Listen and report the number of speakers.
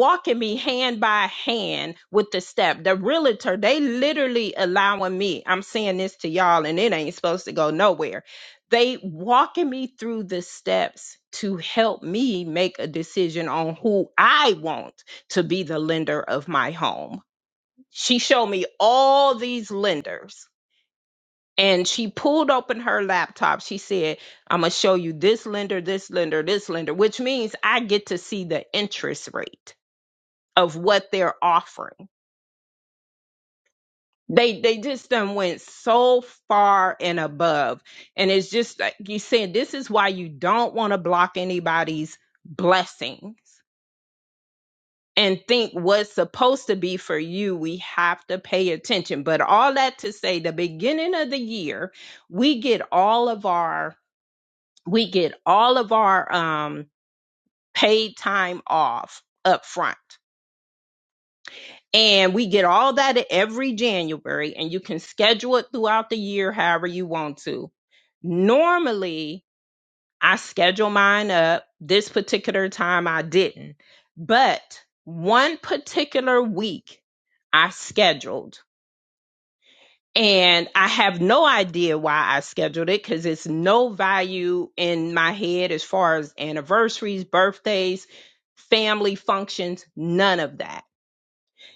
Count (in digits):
1